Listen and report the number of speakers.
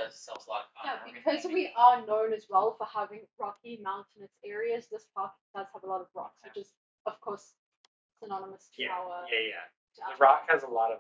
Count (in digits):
3